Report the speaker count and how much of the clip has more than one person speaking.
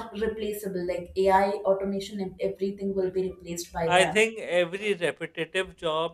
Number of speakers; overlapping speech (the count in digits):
2, about 6%